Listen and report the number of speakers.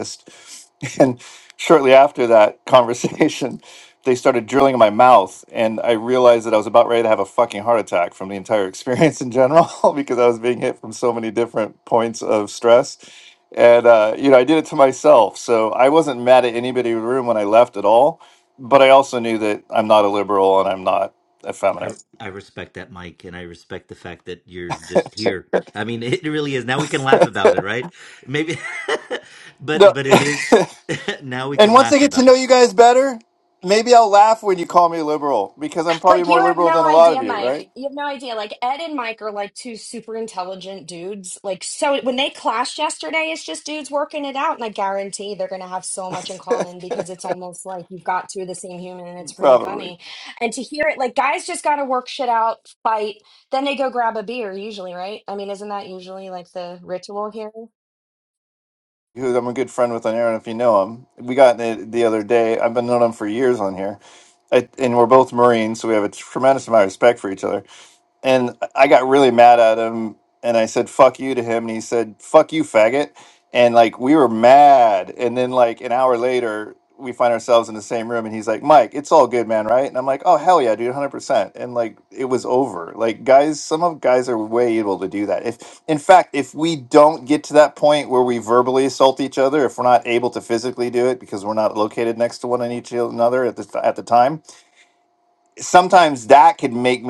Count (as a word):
three